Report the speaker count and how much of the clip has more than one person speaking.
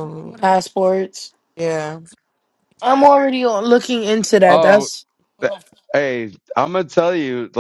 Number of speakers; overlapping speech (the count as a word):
three, about 8%